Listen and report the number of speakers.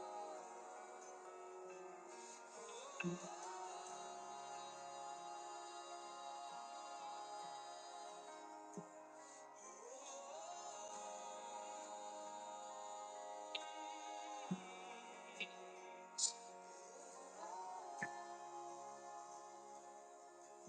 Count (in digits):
0